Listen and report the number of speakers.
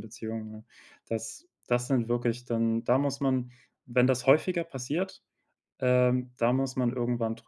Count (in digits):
1